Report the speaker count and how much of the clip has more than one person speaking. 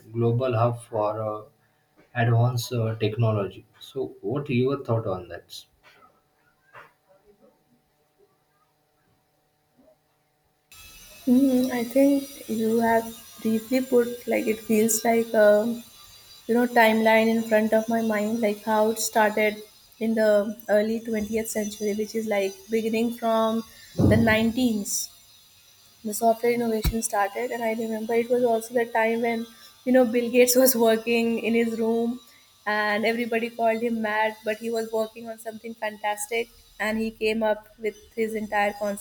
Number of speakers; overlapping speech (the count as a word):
two, no overlap